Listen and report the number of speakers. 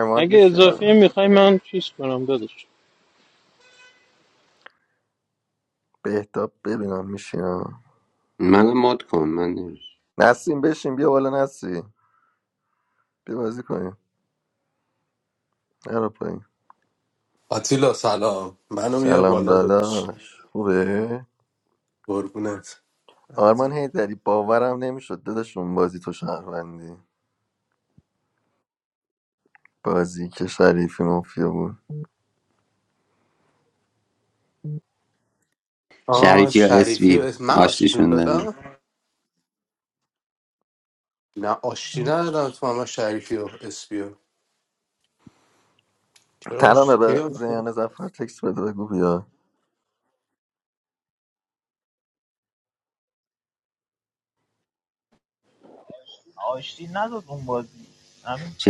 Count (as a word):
five